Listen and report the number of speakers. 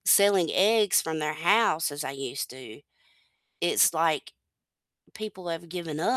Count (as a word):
one